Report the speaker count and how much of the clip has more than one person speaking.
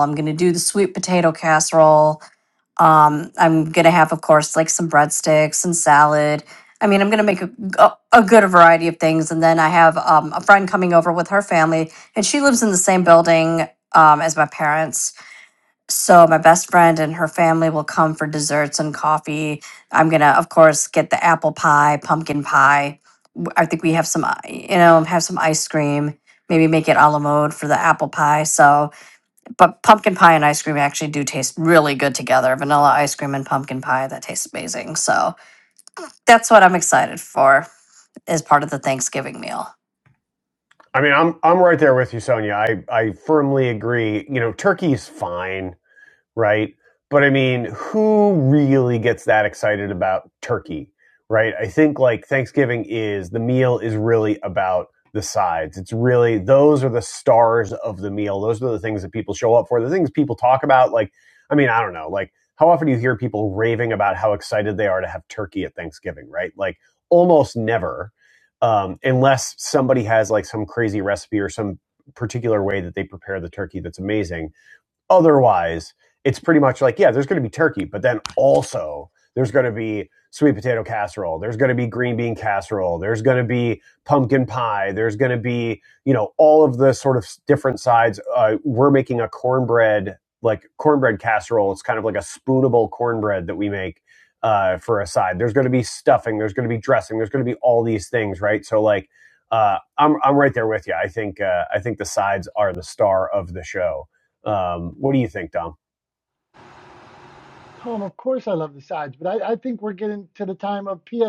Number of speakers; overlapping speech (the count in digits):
3, no overlap